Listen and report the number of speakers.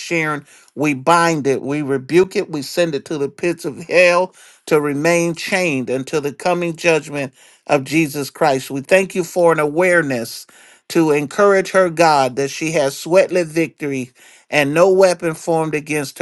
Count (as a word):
one